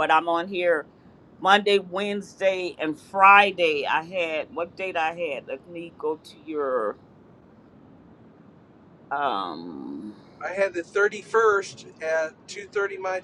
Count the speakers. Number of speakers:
2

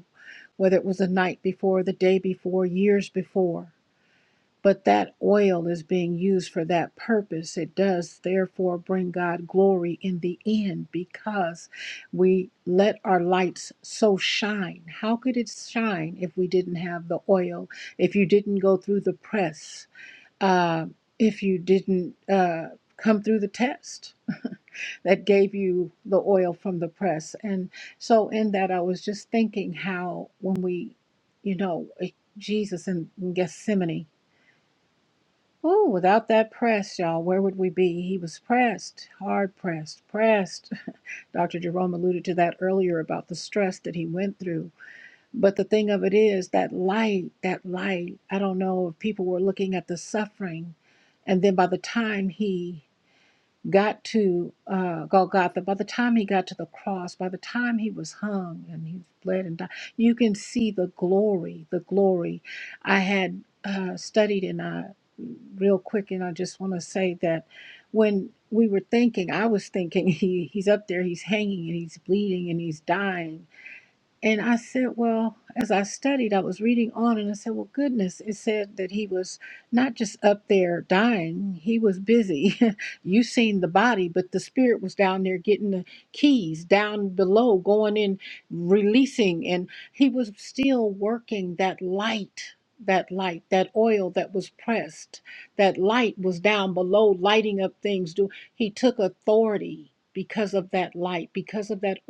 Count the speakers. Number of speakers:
1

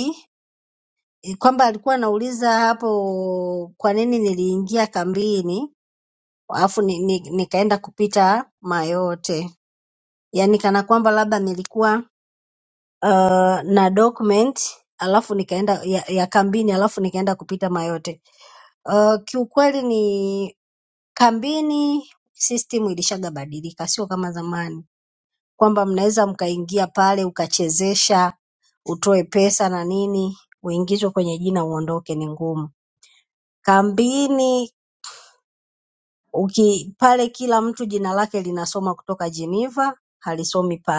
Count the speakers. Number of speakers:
1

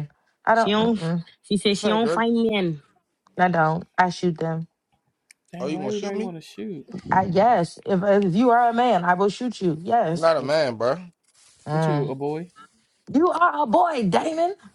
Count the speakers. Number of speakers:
4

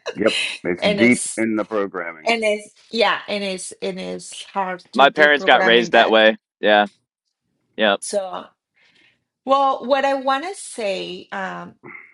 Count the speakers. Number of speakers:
3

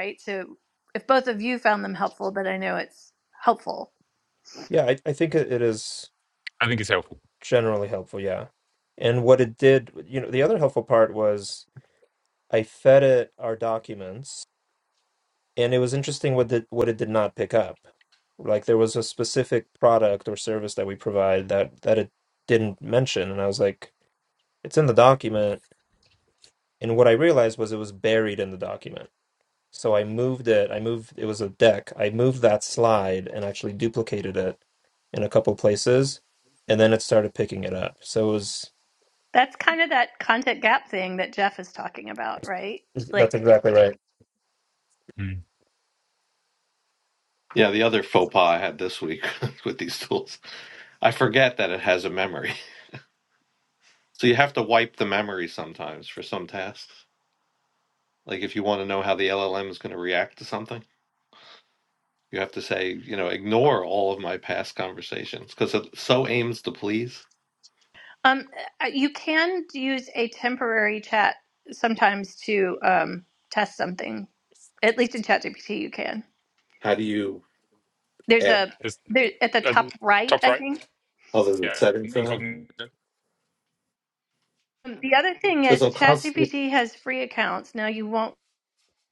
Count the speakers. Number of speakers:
4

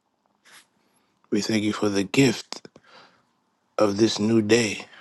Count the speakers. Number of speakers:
1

